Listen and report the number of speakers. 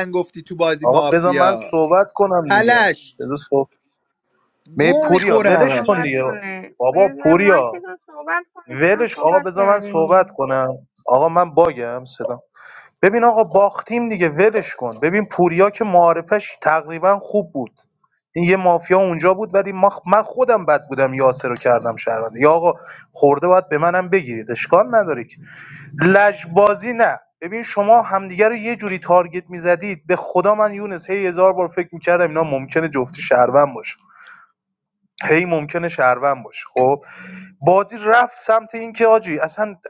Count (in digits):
3